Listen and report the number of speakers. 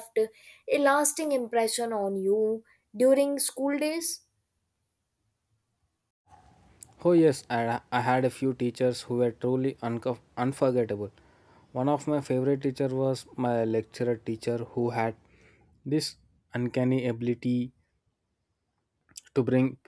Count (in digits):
2